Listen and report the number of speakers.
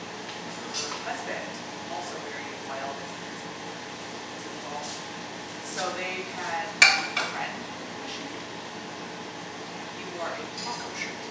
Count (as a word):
one